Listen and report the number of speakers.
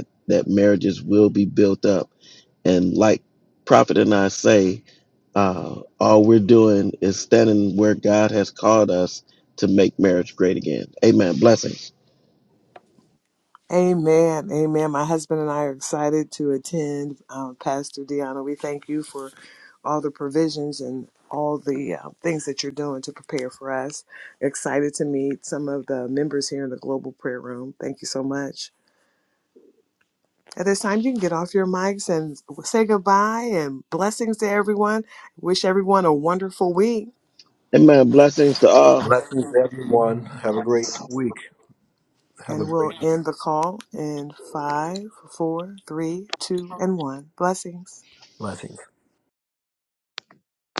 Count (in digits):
3